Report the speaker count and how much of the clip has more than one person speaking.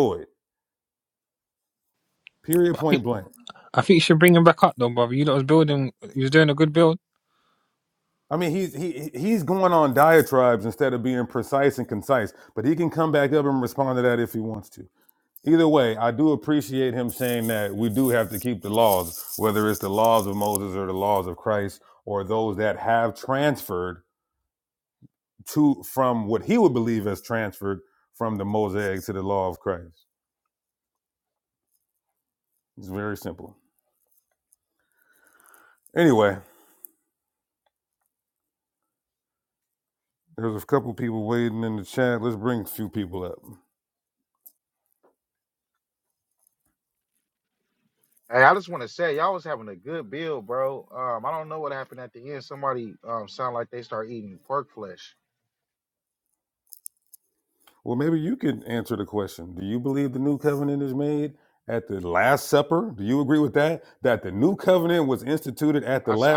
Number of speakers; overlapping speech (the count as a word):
three, about 1%